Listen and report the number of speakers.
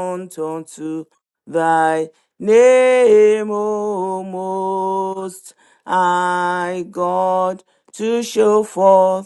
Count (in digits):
1